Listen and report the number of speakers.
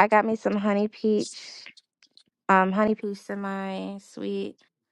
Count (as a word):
one